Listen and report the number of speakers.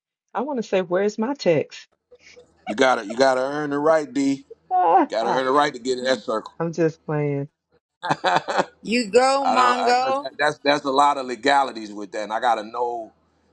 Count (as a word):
three